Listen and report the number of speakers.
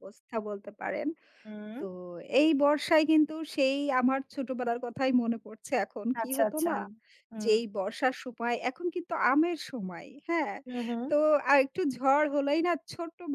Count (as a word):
two